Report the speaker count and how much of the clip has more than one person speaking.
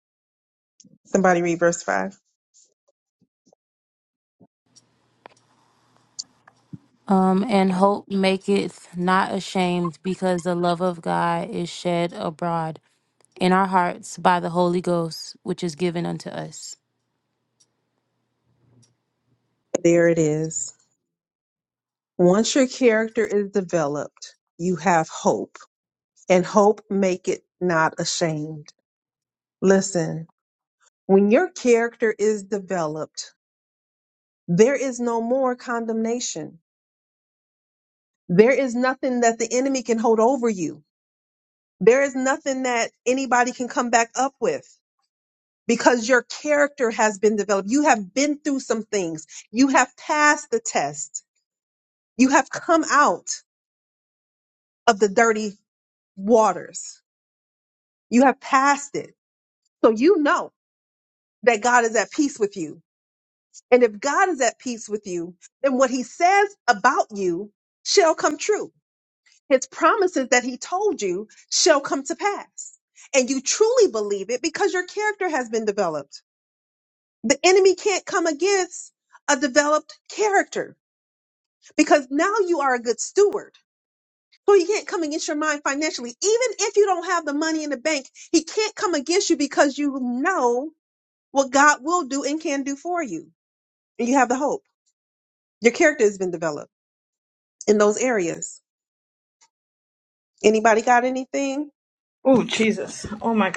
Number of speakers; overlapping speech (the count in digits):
3, no overlap